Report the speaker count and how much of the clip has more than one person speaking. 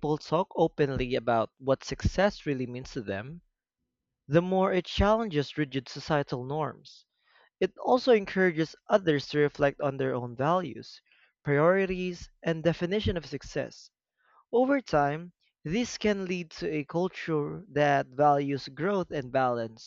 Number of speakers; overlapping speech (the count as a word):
one, no overlap